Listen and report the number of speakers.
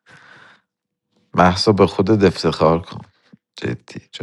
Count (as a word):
one